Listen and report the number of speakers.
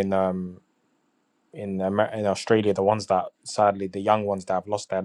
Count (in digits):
1